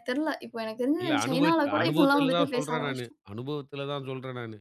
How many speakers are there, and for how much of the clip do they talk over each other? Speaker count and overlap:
two, about 46%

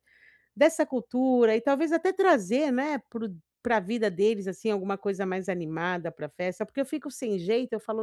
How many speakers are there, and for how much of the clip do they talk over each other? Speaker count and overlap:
one, no overlap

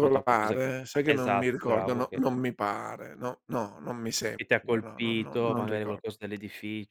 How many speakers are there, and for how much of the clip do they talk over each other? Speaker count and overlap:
two, about 44%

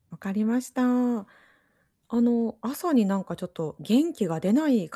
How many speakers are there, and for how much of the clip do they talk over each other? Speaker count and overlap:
one, no overlap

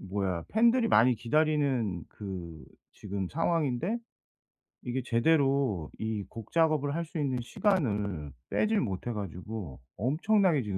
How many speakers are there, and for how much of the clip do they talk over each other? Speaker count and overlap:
one, no overlap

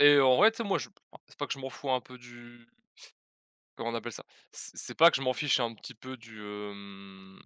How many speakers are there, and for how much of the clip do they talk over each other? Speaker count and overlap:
one, no overlap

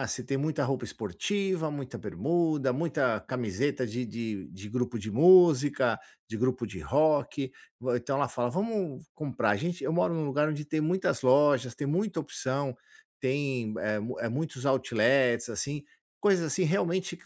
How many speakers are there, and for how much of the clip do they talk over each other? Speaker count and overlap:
one, no overlap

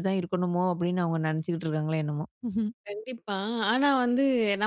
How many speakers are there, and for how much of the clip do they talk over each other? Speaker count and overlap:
two, no overlap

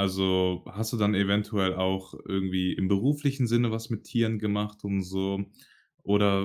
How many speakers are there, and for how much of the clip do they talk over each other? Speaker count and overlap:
one, no overlap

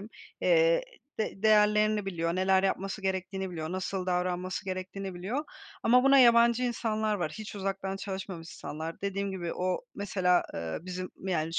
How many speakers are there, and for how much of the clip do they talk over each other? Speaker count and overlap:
one, no overlap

